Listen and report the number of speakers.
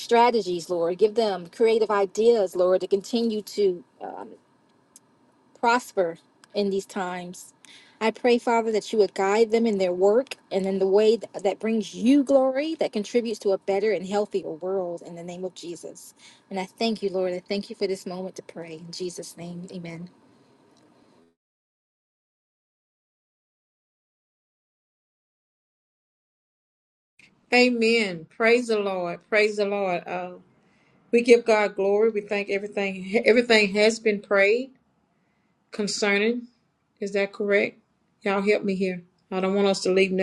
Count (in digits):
2